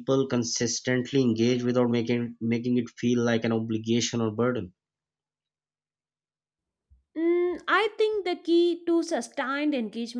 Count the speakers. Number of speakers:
two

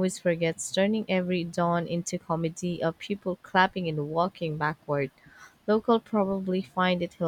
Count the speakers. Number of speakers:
one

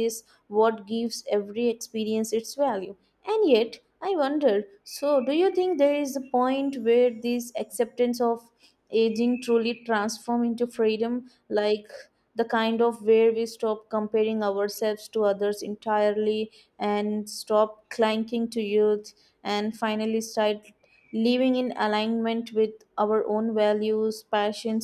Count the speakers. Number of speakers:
one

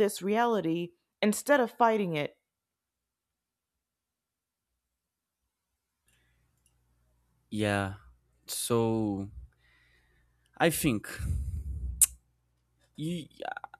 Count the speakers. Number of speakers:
two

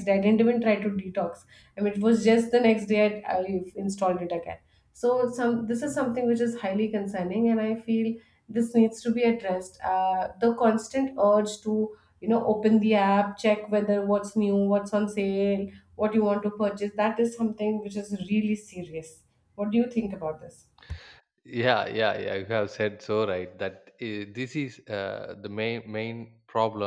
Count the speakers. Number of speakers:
two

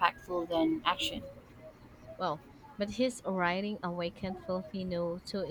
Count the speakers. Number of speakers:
two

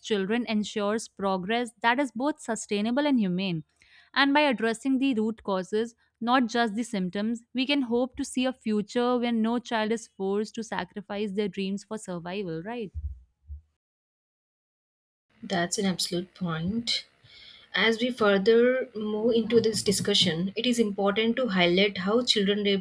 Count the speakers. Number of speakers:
two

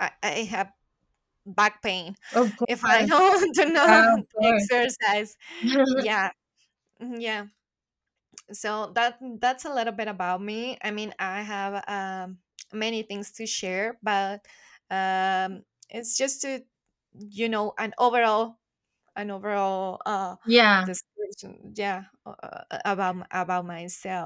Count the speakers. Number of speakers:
two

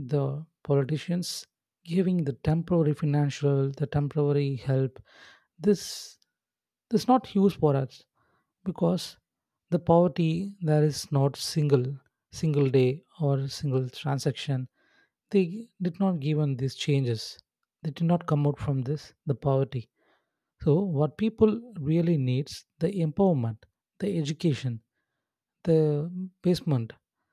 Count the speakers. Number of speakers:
one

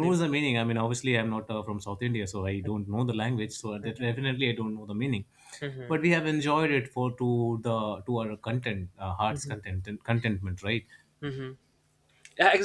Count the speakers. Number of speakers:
two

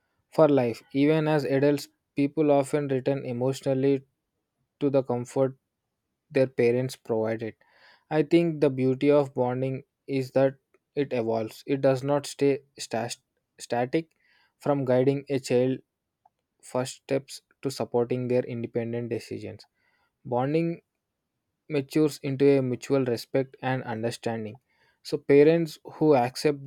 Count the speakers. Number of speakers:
one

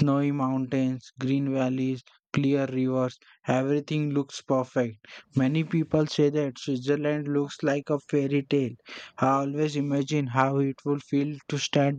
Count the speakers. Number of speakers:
one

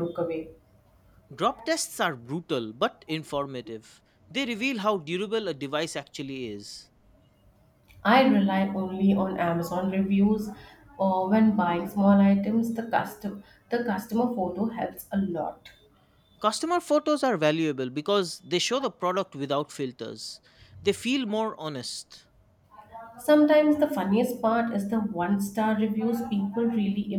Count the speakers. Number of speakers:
two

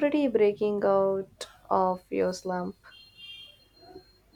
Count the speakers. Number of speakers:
one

